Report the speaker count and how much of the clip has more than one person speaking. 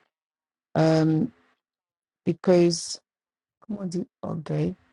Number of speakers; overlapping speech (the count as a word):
one, no overlap